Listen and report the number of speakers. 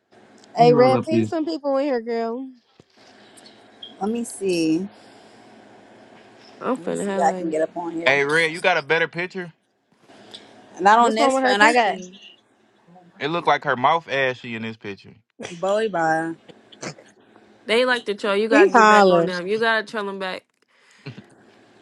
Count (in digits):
4